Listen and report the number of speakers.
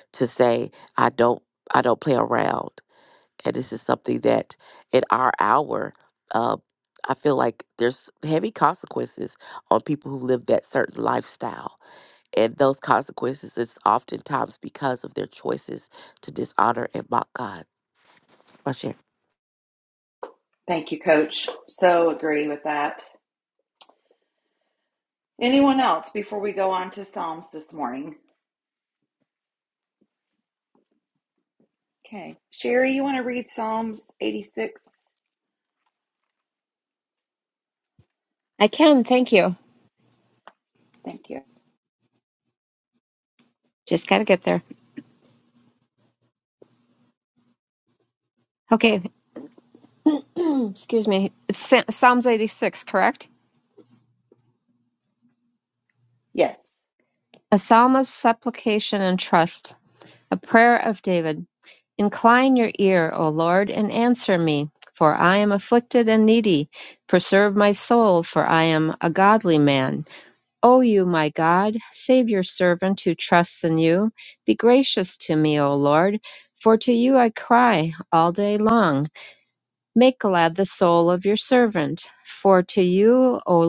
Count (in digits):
3